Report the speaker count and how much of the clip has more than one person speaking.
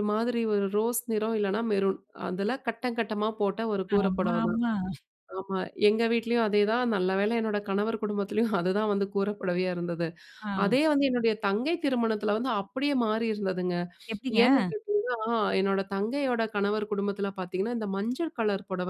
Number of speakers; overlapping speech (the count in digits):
2, about 4%